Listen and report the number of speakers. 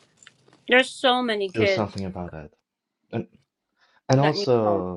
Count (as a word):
two